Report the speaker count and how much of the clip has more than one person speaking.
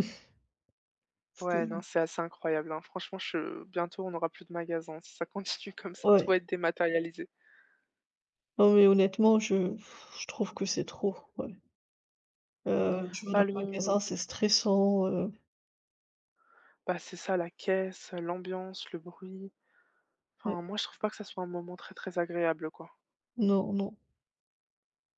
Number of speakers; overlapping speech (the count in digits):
2, about 4%